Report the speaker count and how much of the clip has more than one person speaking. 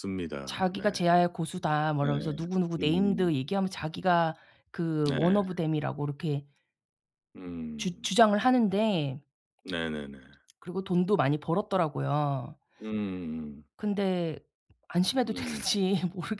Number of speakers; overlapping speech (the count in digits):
2, about 12%